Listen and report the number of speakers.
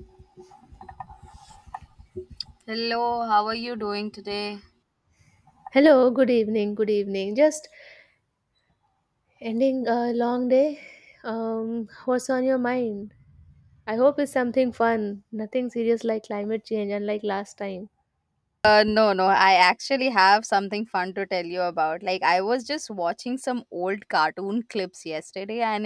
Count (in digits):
2